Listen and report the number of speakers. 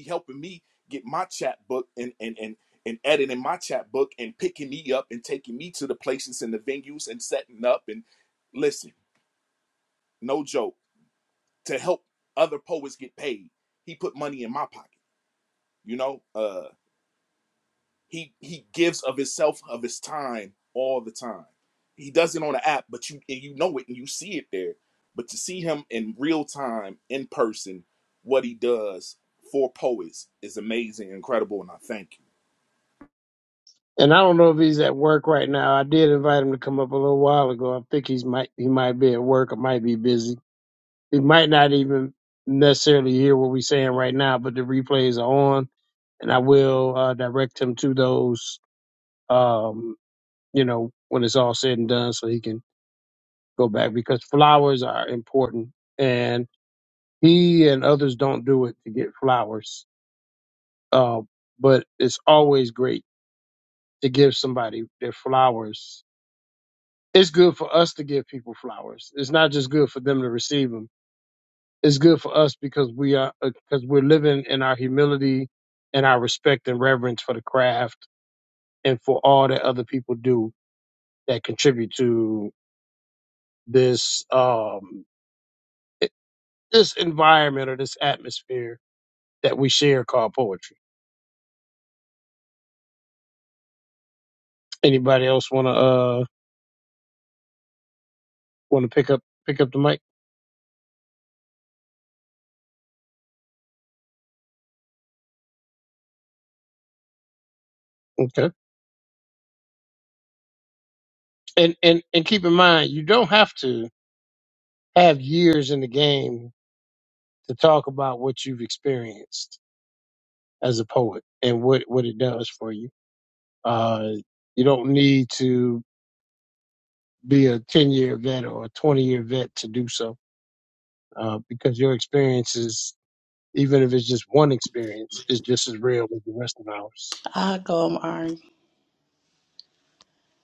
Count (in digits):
3